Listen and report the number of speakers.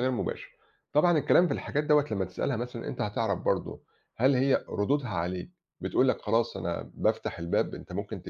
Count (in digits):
1